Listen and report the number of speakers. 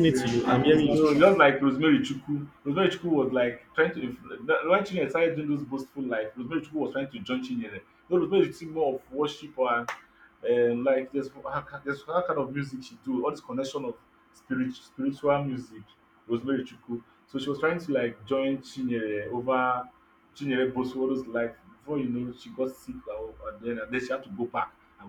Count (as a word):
two